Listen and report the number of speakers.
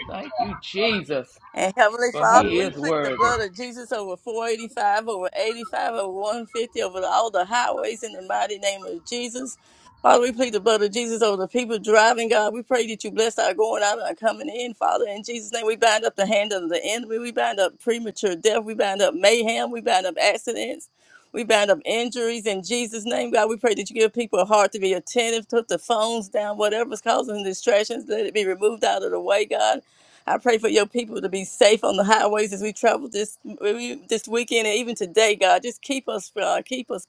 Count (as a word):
two